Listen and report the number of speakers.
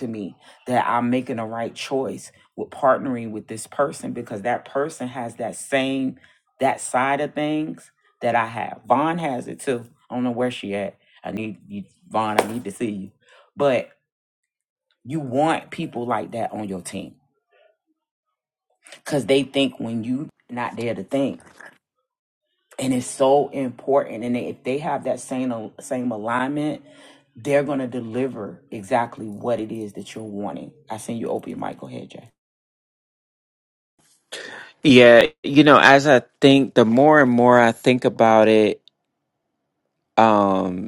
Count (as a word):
two